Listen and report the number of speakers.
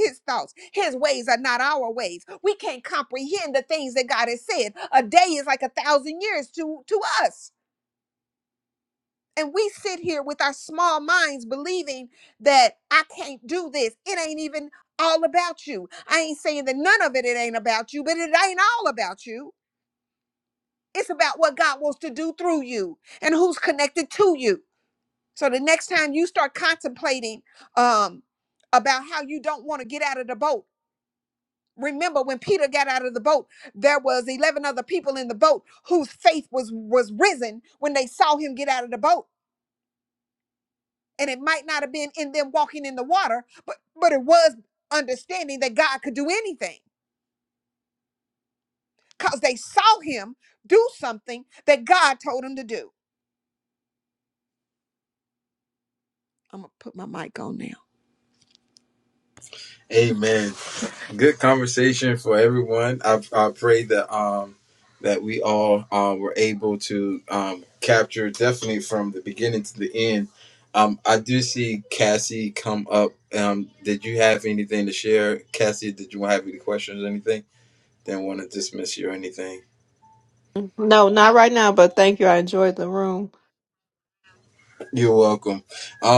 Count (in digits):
3